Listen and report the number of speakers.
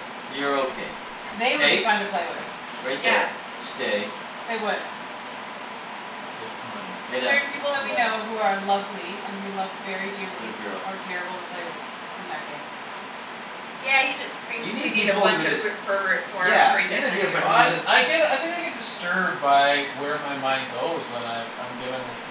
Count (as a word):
four